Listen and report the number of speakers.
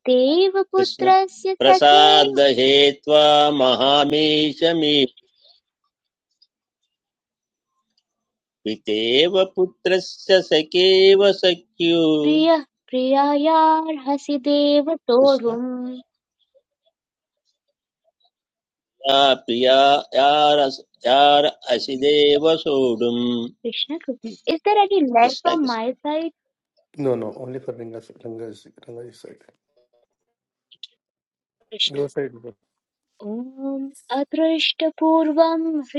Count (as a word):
three